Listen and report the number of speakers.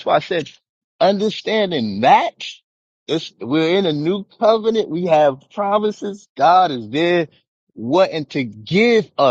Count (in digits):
1